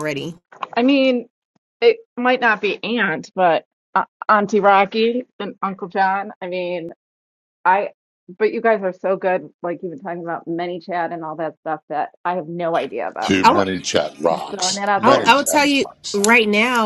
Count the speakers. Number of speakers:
3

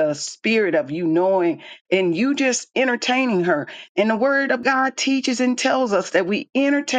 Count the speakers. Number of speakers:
1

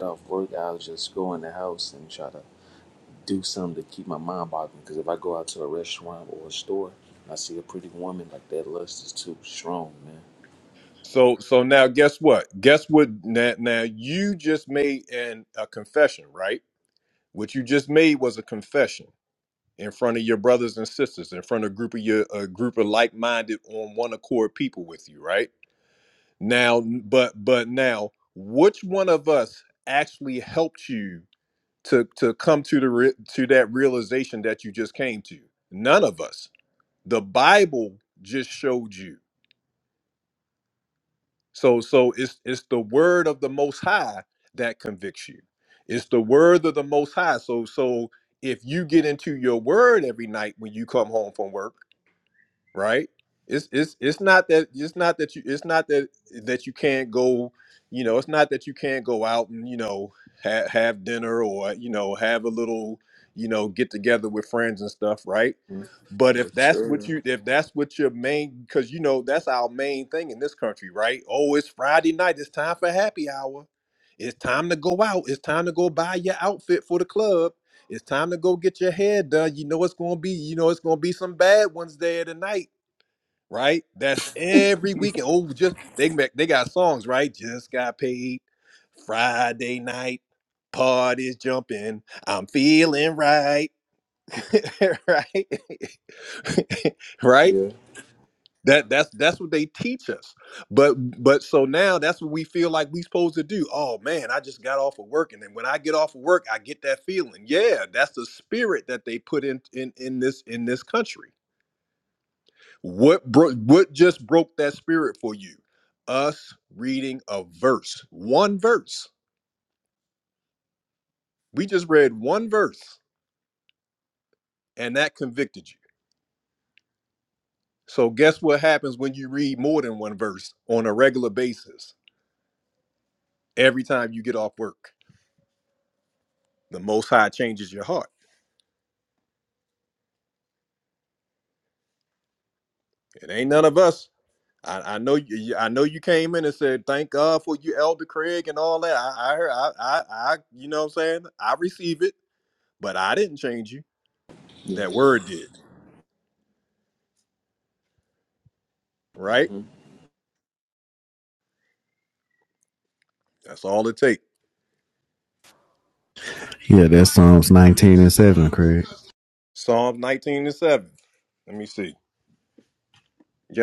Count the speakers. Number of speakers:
3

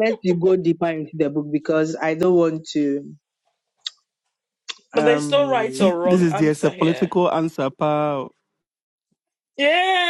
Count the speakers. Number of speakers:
3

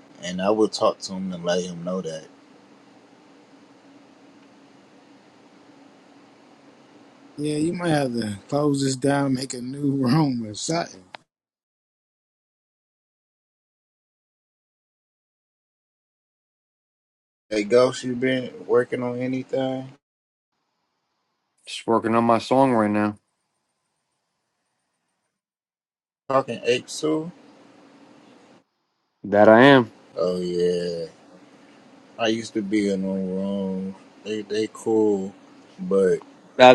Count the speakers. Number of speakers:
3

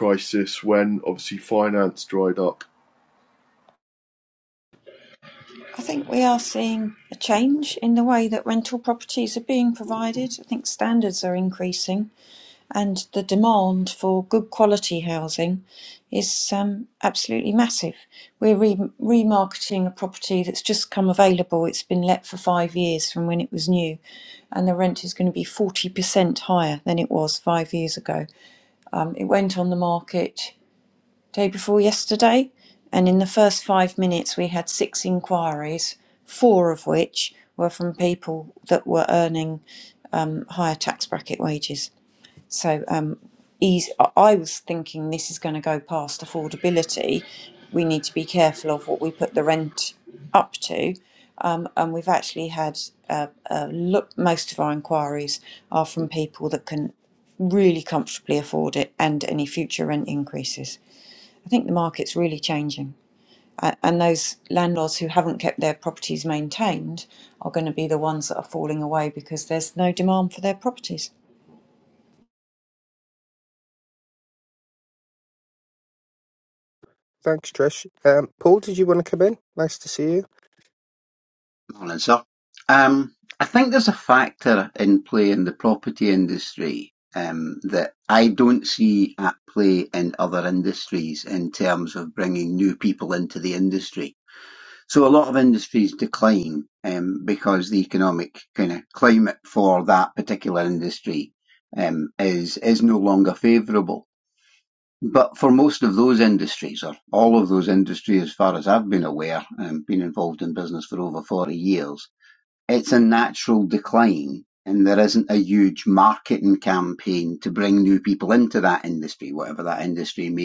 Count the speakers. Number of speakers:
4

